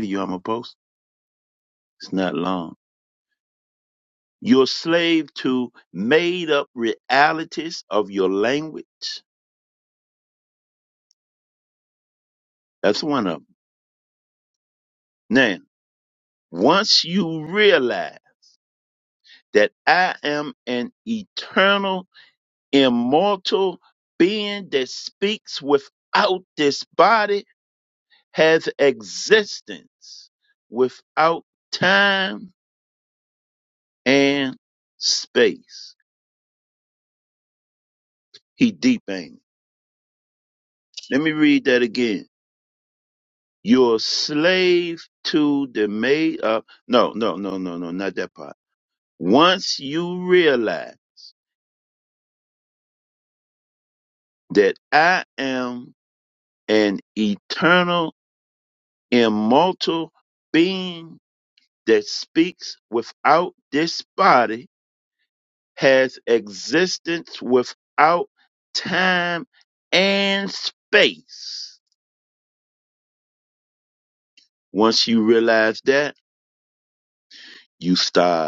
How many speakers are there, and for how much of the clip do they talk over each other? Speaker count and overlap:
1, no overlap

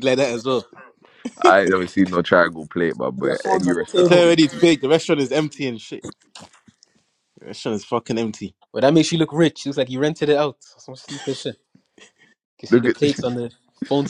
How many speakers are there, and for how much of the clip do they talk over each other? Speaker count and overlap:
3, about 13%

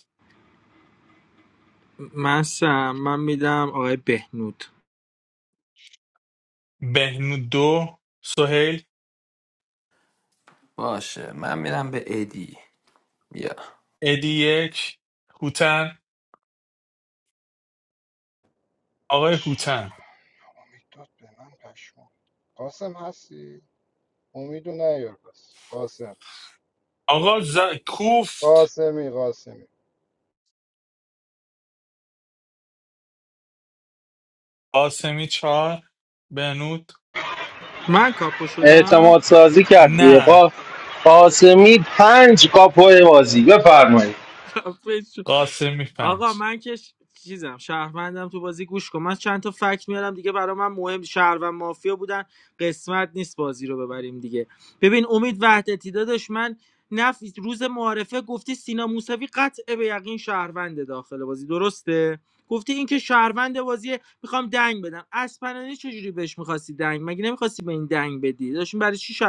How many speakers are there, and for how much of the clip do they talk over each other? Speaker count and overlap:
5, about 3%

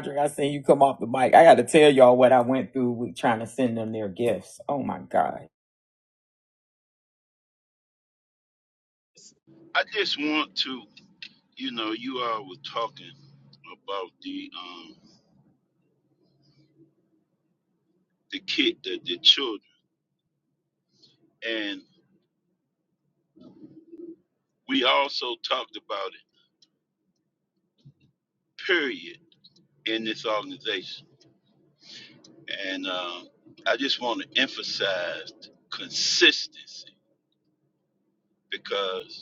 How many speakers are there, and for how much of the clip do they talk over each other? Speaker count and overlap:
2, no overlap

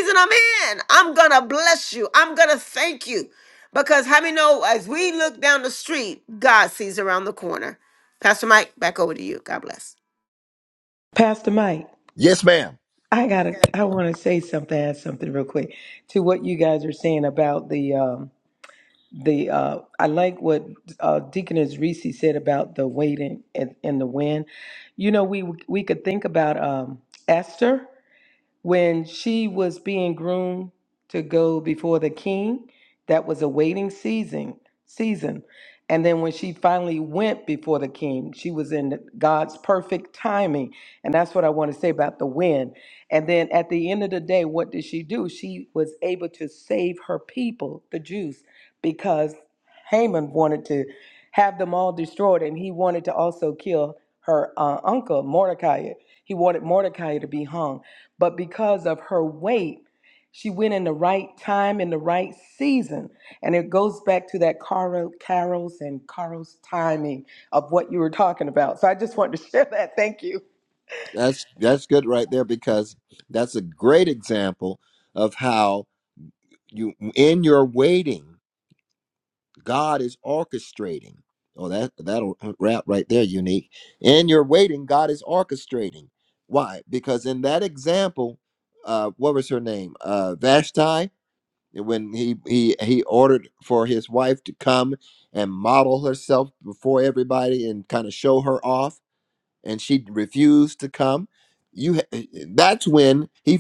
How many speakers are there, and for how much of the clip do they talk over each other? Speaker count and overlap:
3, no overlap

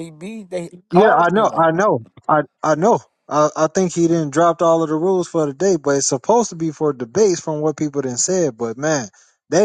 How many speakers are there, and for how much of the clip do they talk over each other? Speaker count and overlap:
2, about 7%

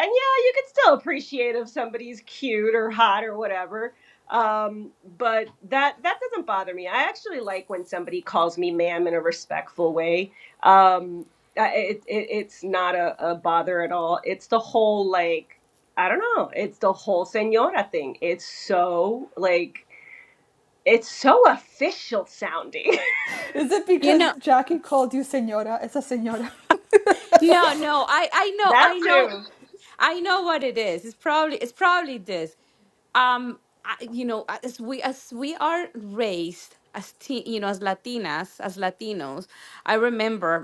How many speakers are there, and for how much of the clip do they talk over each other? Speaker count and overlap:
3, about 3%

